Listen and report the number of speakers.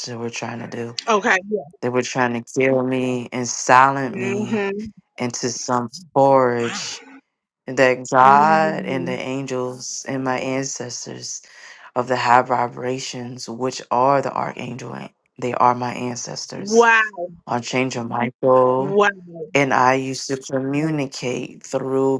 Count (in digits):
2